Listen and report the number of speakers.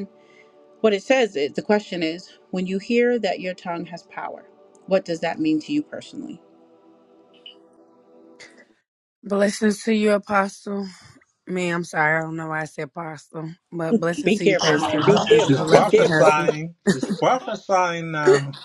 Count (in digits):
3